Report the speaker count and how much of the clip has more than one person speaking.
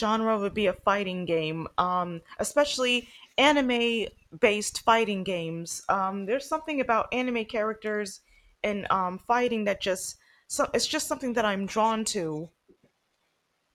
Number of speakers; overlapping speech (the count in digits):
1, no overlap